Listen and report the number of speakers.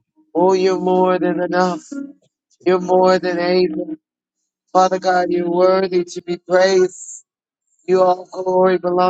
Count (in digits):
1